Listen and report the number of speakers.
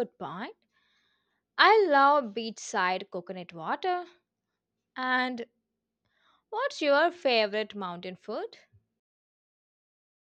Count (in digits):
1